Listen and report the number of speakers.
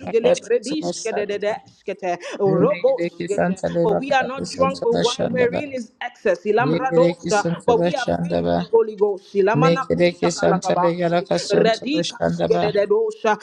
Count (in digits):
2